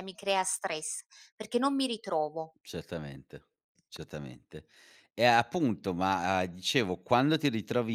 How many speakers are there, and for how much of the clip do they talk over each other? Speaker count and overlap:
2, no overlap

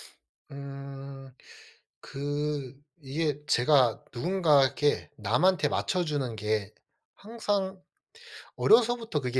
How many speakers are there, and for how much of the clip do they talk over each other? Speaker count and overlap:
1, no overlap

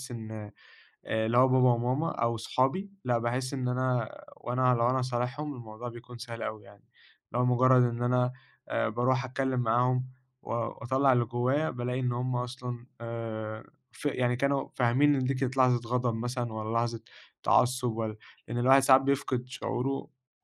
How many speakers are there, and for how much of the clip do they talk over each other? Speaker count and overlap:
1, no overlap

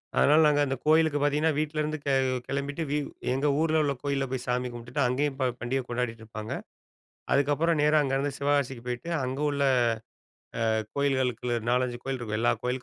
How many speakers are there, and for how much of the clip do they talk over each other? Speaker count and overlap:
1, no overlap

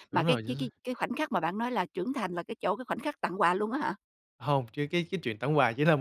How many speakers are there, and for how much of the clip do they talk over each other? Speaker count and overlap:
2, about 9%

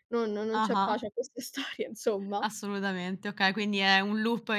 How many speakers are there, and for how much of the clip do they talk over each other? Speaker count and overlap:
2, about 11%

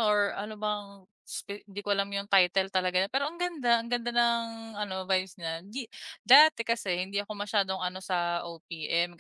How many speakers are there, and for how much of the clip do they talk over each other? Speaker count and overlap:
1, no overlap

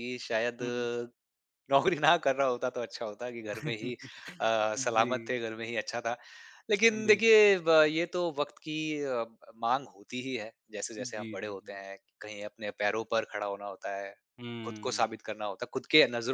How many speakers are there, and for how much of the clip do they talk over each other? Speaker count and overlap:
2, about 9%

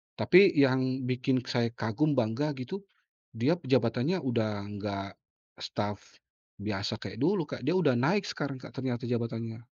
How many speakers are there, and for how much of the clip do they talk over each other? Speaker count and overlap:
1, no overlap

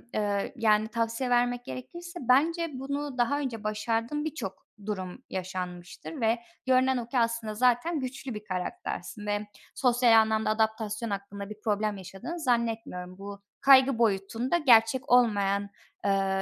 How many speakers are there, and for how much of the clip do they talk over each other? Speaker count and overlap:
1, no overlap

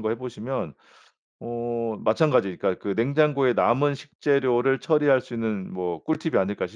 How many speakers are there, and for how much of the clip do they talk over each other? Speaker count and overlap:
1, no overlap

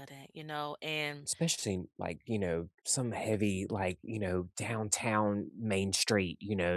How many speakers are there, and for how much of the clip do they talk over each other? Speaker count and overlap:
2, no overlap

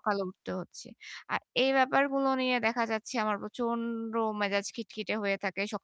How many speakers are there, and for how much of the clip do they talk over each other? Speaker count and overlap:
1, no overlap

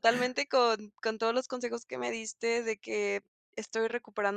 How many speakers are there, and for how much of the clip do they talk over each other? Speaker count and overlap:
1, no overlap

